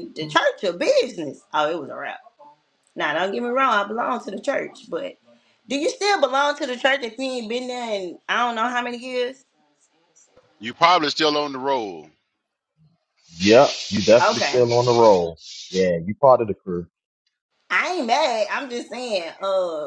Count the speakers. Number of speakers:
3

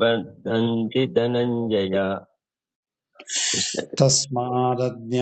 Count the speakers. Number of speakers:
2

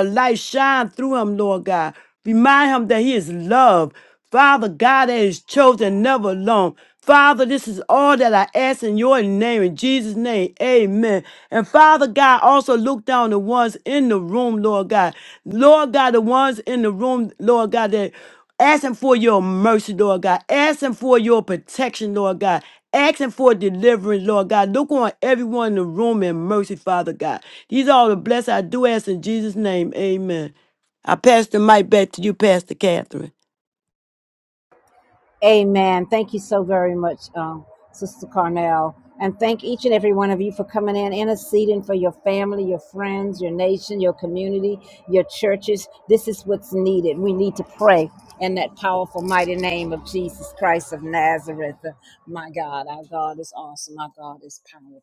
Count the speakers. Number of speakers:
2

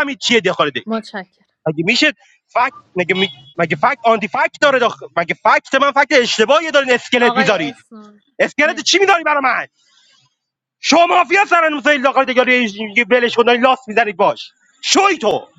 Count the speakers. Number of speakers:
2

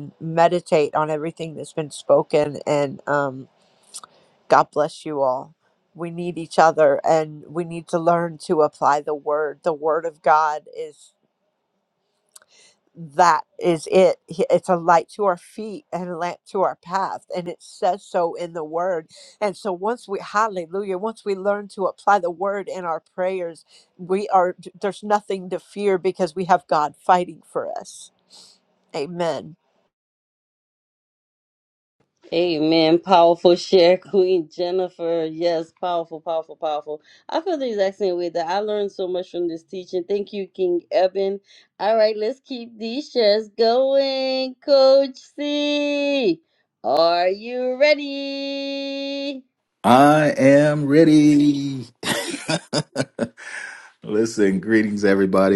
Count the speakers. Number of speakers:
3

